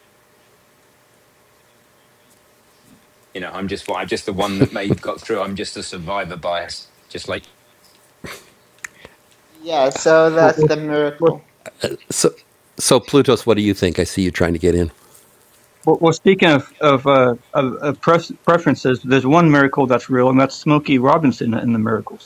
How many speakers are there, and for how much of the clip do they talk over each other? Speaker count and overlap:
four, about 1%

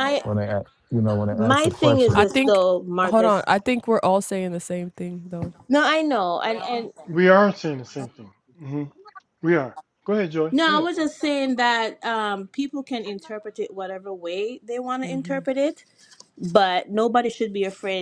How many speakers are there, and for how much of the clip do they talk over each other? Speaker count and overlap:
four, about 13%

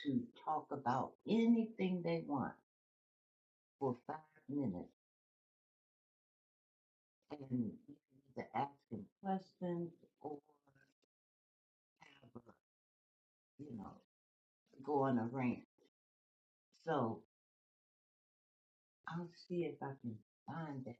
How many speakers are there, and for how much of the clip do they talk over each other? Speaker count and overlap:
one, no overlap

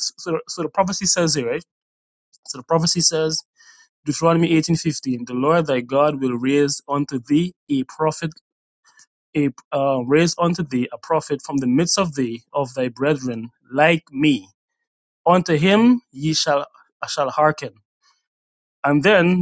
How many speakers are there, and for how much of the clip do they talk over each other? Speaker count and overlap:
one, no overlap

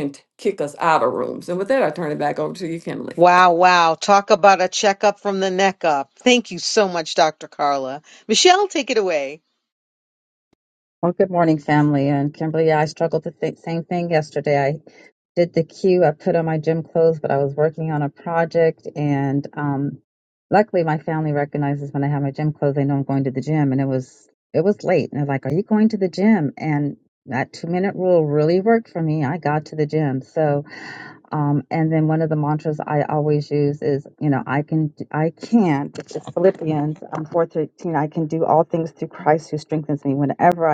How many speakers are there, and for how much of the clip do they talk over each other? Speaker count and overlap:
three, no overlap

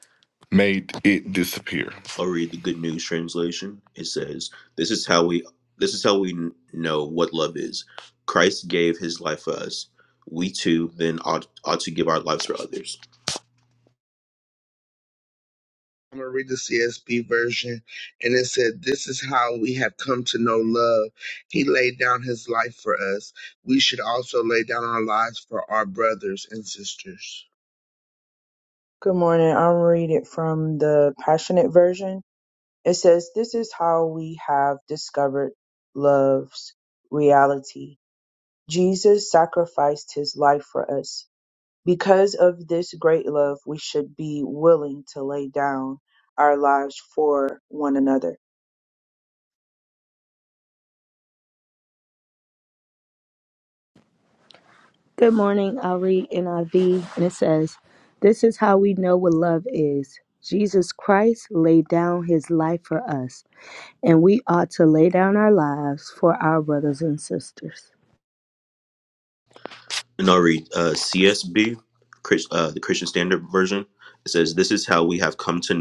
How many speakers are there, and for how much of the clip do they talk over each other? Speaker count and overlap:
five, no overlap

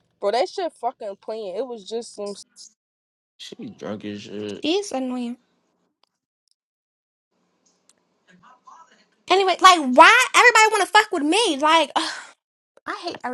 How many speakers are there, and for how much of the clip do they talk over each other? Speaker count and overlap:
three, no overlap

